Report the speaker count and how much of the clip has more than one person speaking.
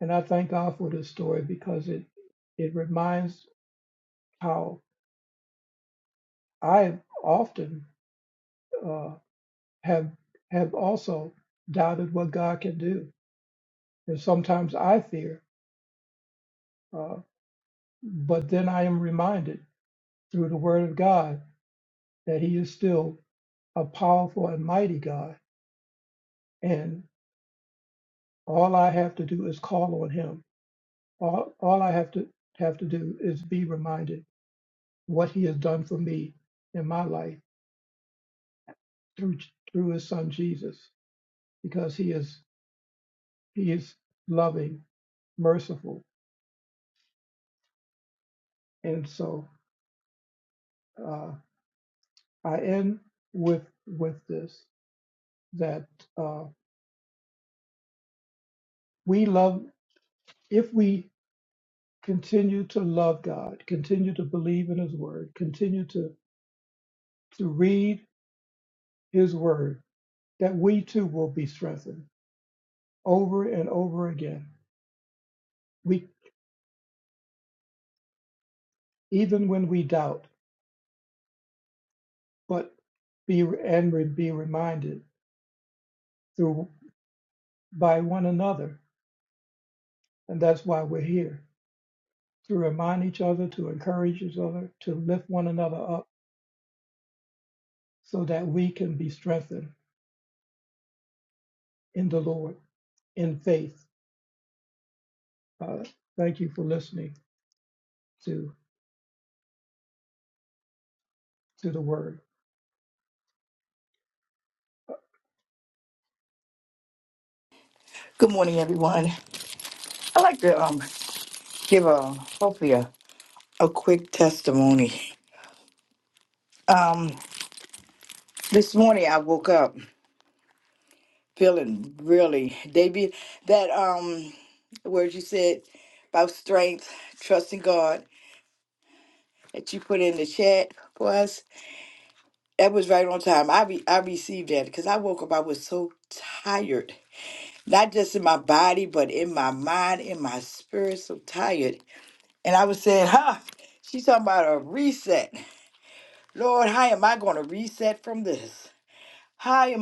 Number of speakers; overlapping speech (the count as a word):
two, no overlap